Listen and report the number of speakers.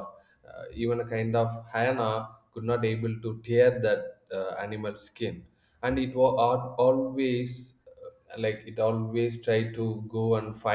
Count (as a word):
one